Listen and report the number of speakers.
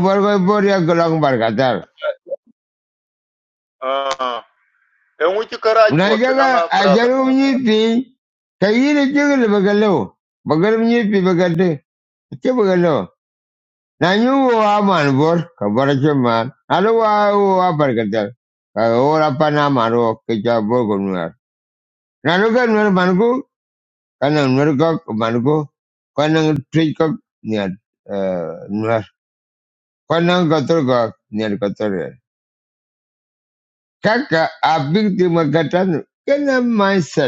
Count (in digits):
2